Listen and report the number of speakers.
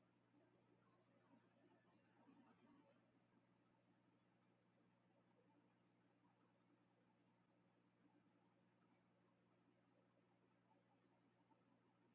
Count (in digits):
0